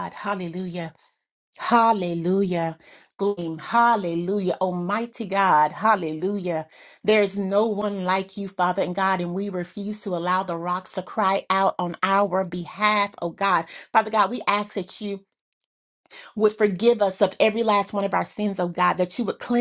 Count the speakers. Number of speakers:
one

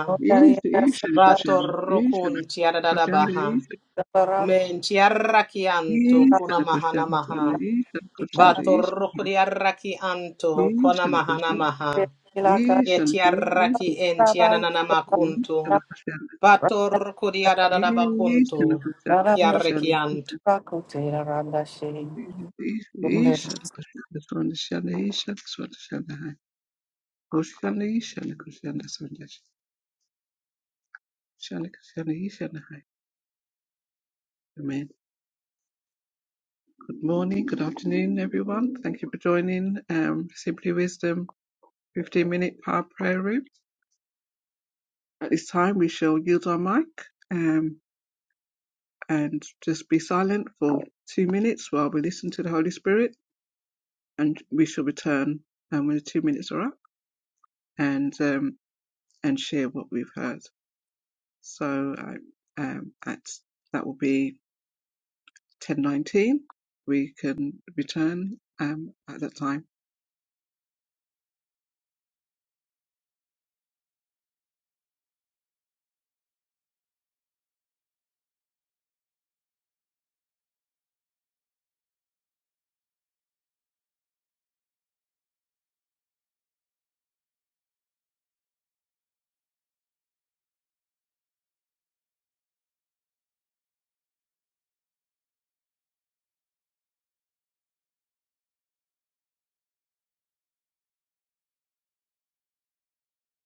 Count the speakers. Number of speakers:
three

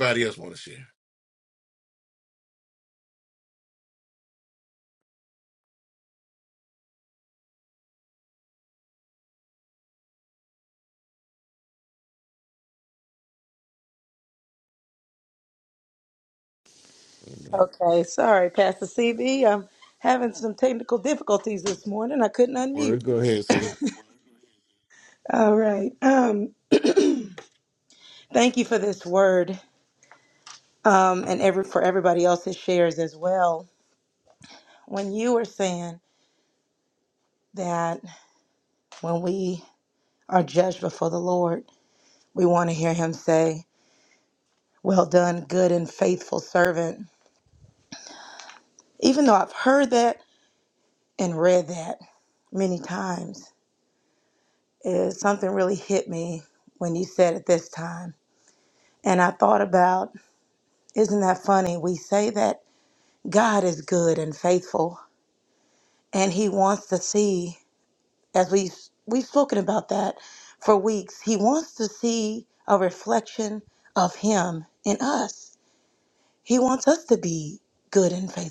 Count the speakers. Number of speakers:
two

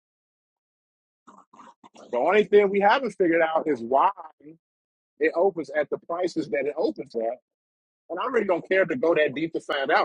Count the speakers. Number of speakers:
one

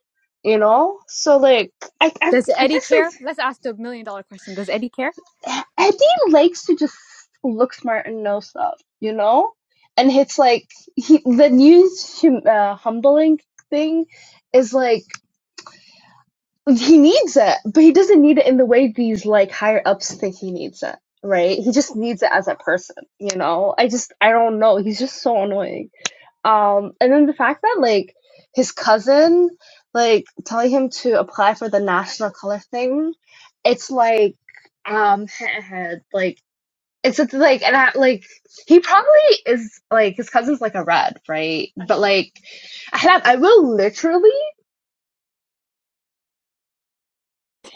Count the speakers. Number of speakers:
two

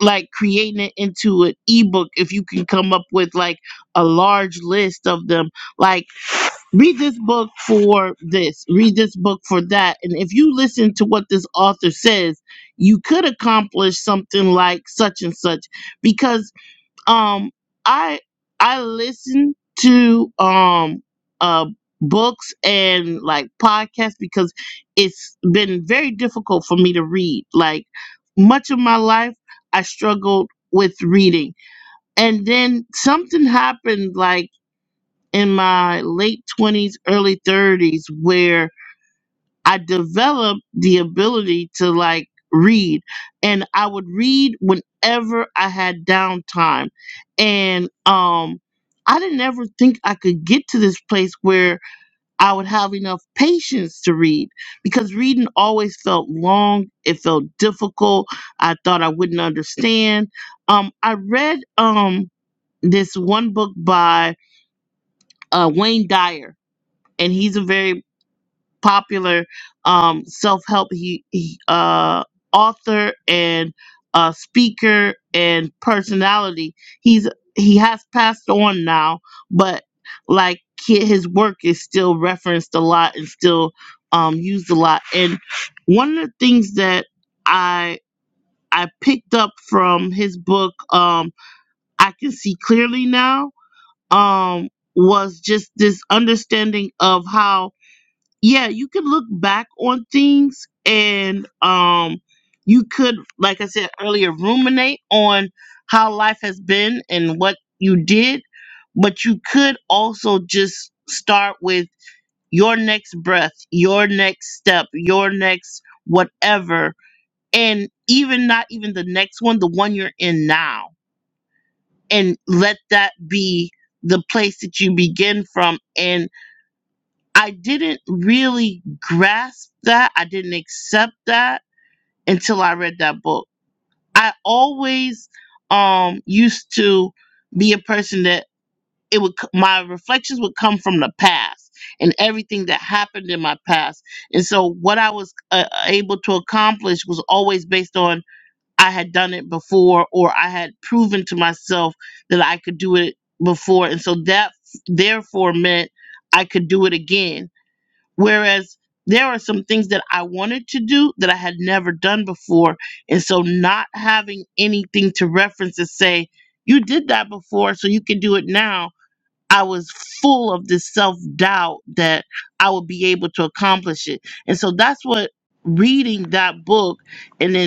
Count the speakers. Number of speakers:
one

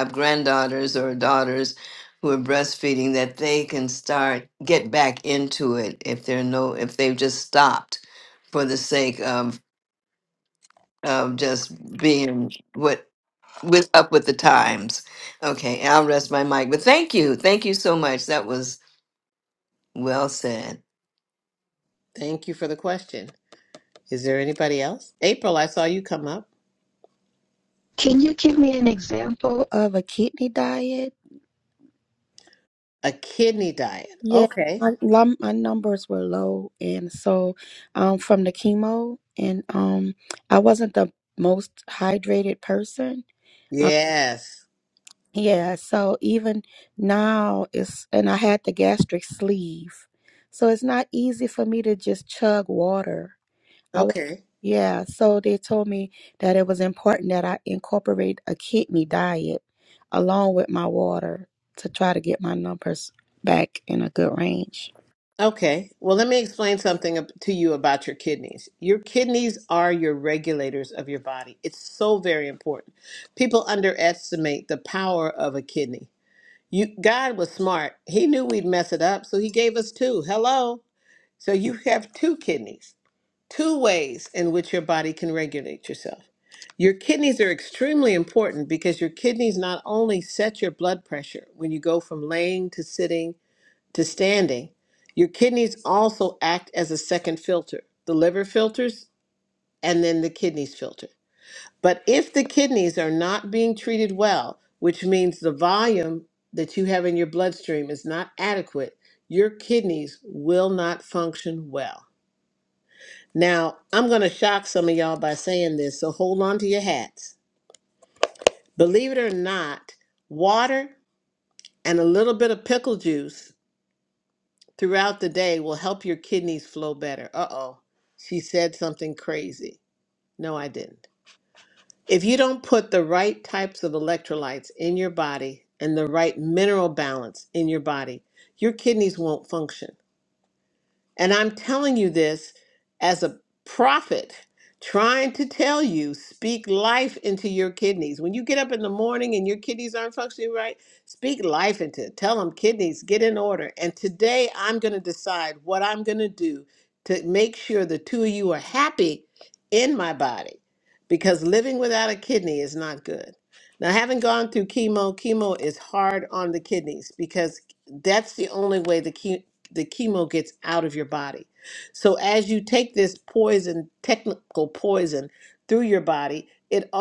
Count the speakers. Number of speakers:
three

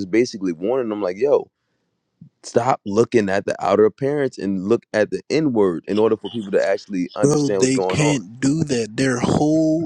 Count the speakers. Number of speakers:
two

